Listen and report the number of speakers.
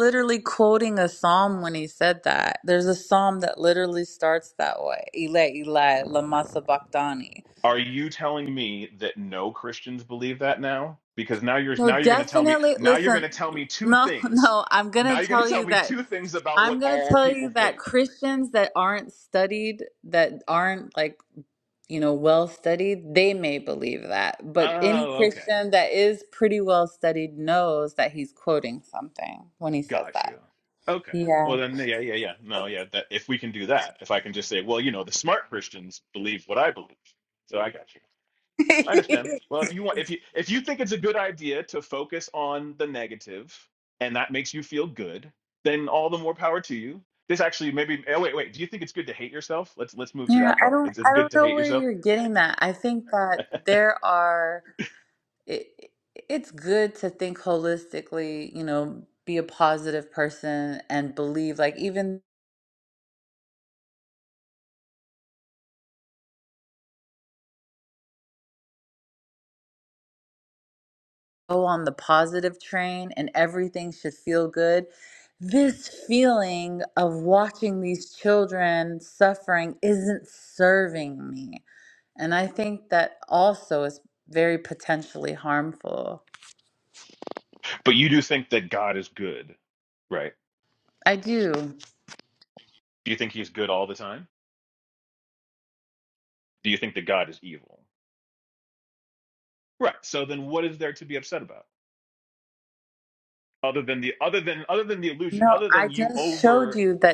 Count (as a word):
two